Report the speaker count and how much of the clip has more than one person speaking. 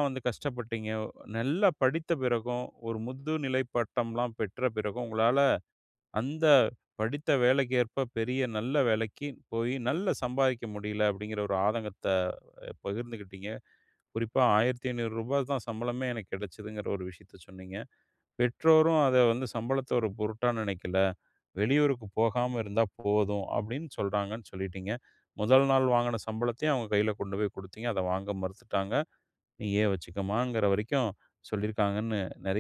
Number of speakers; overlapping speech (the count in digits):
1, no overlap